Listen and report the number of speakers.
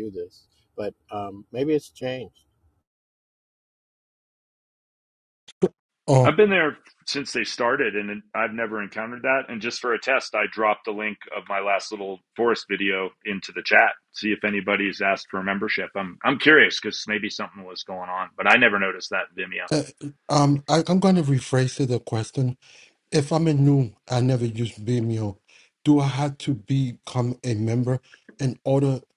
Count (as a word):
three